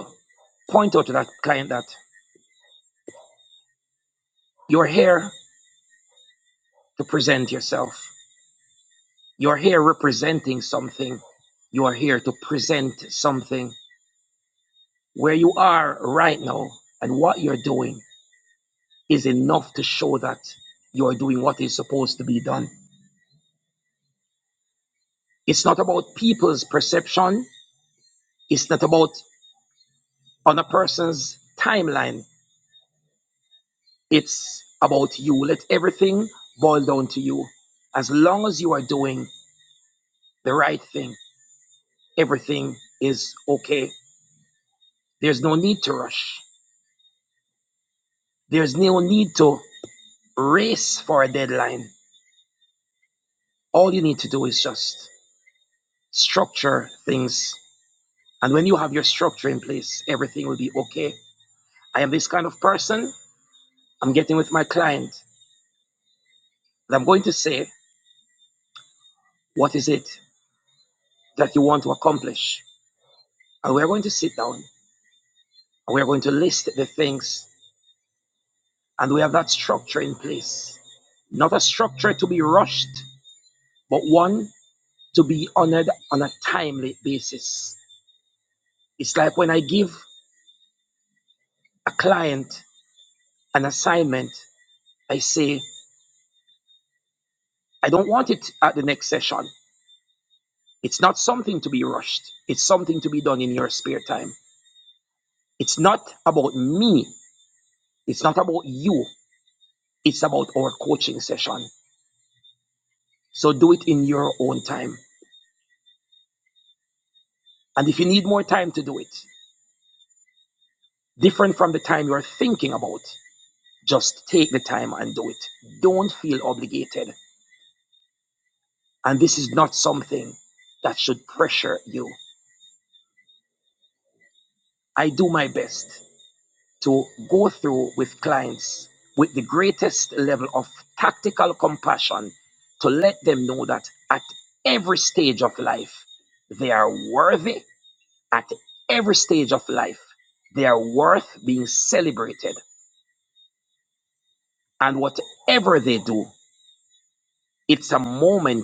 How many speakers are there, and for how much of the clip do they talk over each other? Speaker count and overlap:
1, no overlap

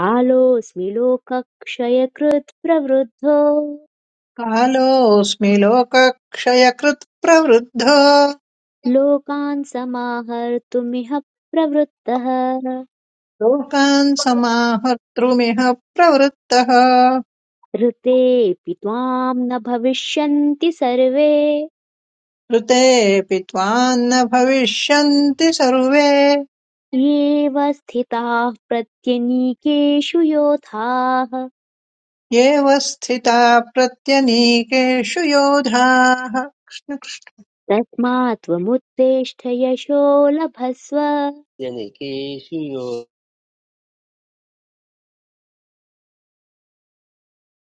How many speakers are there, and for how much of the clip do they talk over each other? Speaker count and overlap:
3, no overlap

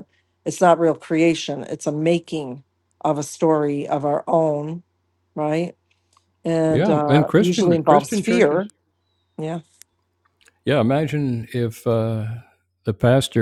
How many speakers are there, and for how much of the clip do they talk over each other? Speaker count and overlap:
2, about 14%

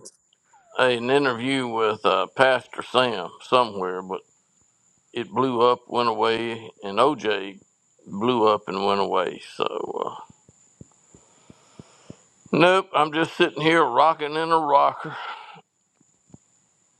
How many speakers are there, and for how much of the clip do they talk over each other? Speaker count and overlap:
1, no overlap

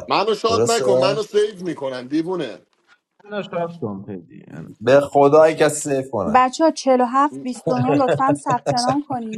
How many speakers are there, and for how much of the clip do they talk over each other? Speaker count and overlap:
4, about 14%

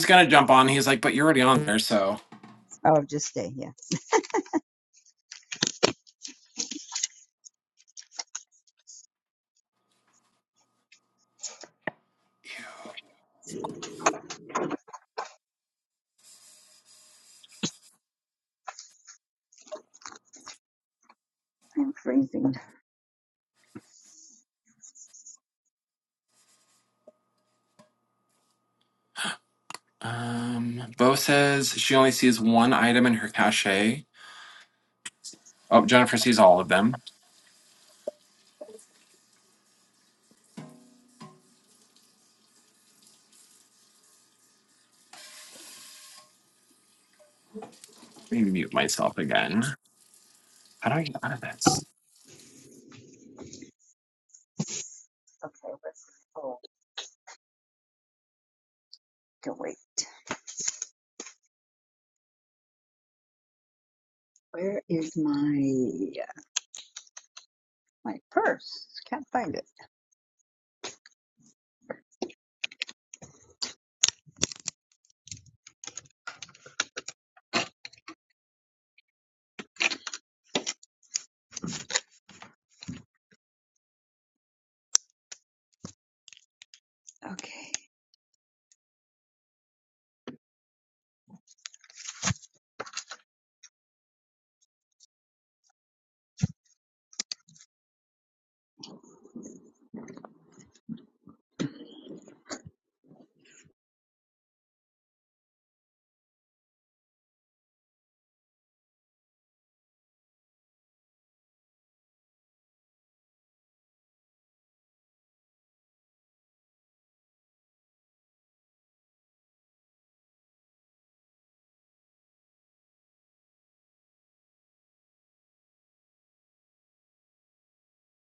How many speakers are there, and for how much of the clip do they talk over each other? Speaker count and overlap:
2, no overlap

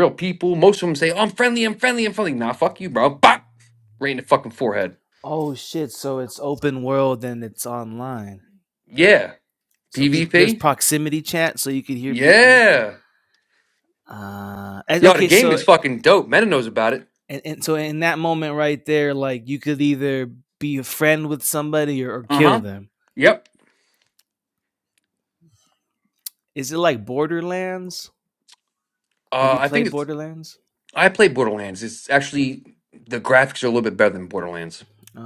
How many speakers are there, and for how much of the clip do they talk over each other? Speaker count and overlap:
2, about 7%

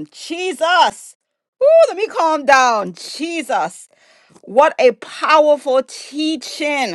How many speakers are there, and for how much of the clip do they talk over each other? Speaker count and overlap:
1, no overlap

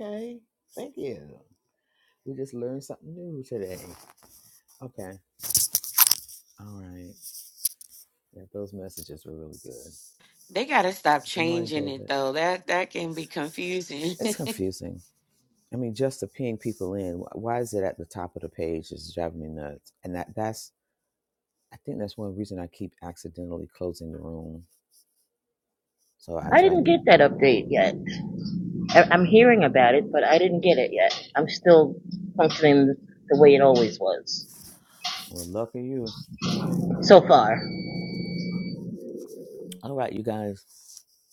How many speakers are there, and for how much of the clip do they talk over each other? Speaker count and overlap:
3, about 3%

